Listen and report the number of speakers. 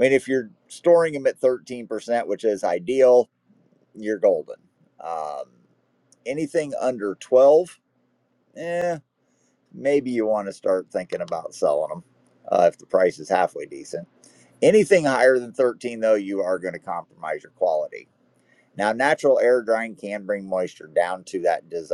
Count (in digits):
1